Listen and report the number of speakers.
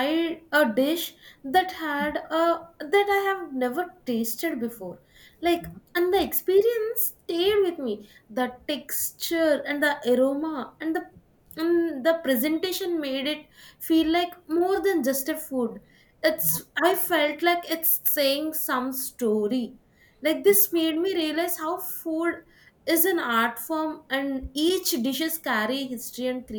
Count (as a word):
one